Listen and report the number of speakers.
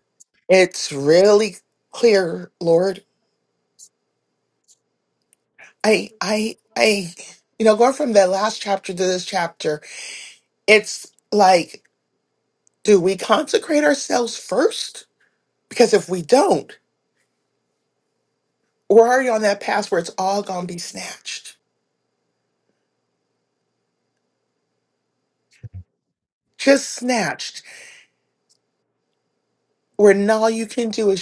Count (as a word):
one